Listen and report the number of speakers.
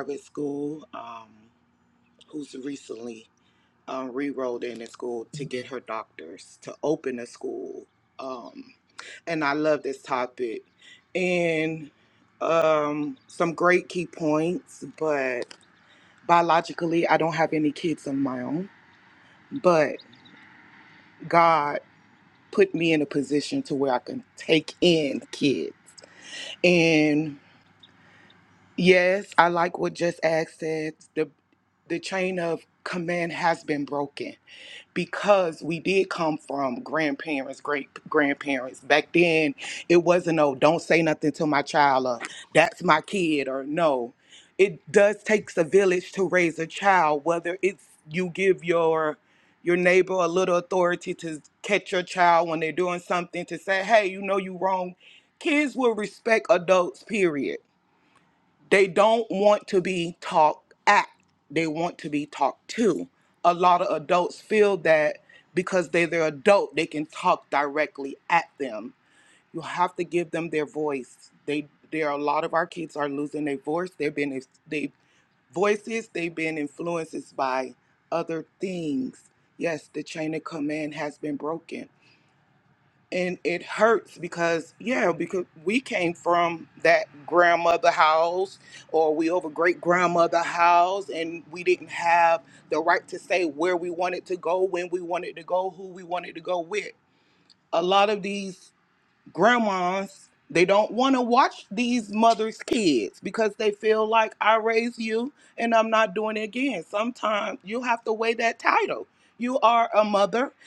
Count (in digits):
1